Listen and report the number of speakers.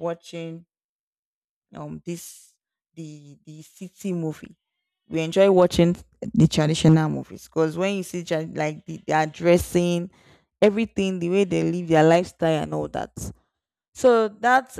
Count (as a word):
one